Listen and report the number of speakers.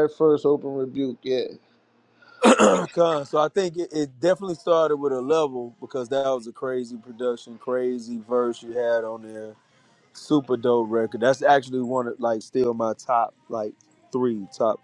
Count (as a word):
two